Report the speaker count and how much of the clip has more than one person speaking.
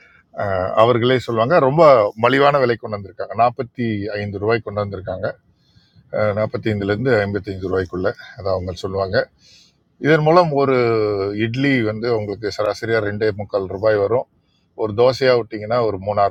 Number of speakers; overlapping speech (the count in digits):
1, no overlap